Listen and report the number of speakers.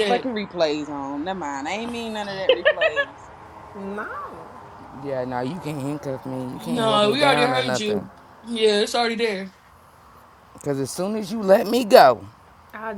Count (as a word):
four